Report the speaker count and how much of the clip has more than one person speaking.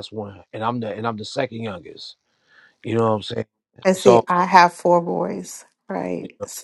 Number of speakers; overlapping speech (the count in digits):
2, about 5%